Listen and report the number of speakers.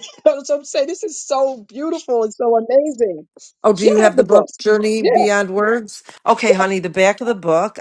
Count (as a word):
two